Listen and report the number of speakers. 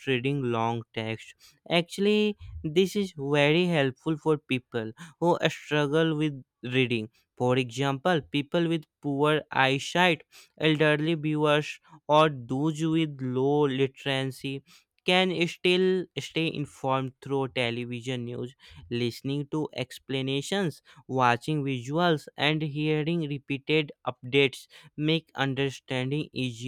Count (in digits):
1